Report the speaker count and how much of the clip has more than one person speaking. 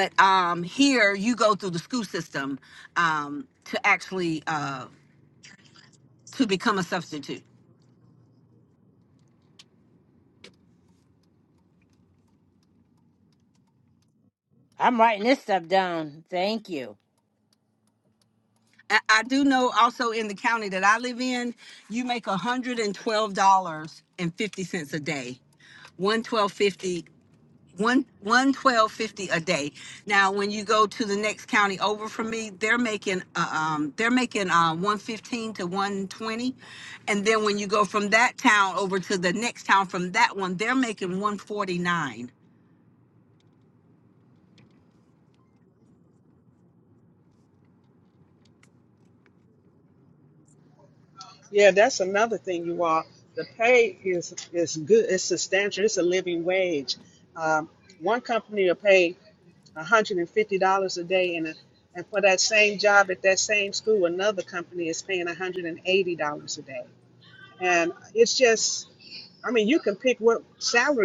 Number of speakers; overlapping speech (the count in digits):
3, no overlap